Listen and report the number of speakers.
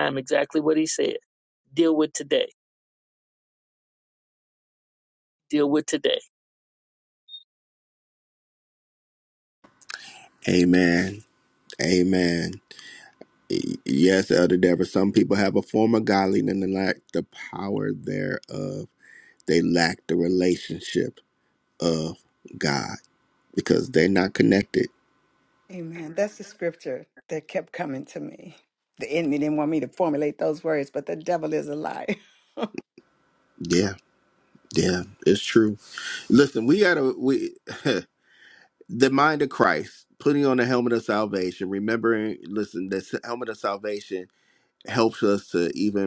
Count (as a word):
three